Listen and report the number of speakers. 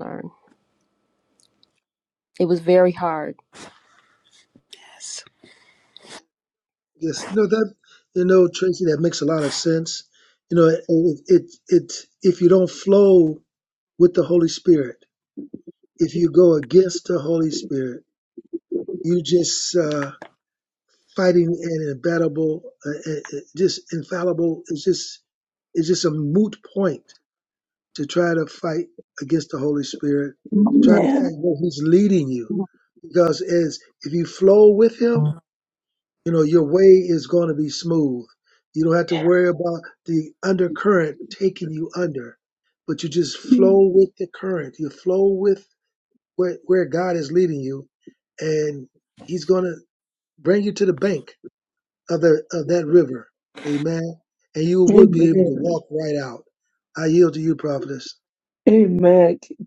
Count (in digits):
3